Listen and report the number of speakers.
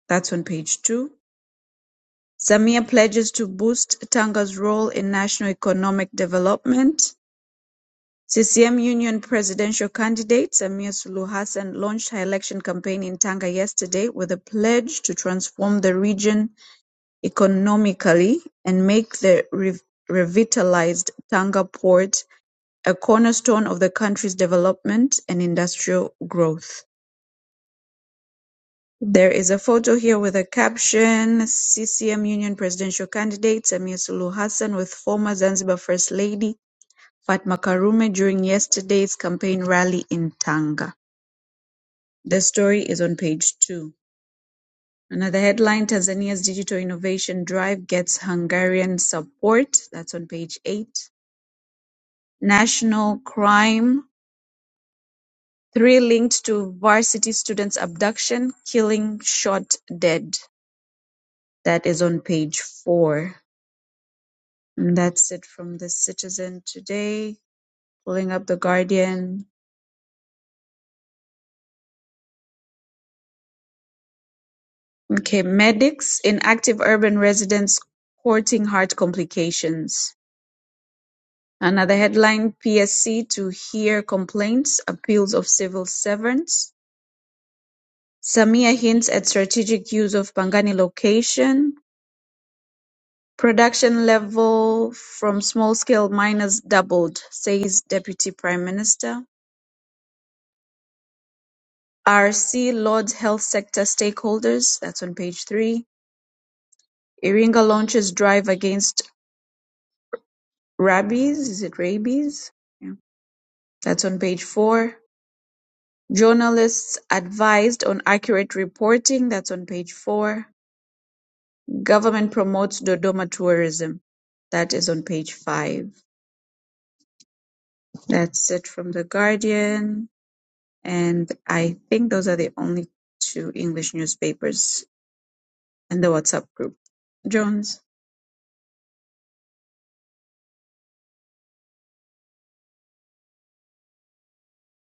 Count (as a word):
one